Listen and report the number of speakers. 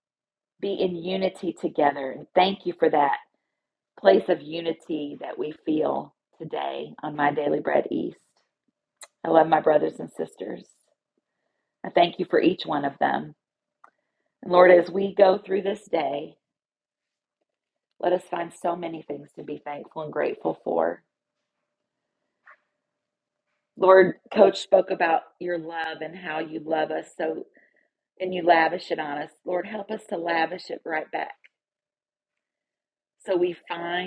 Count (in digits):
1